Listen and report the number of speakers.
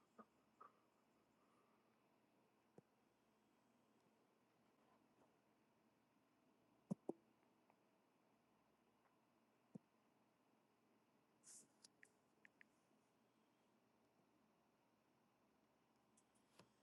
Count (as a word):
zero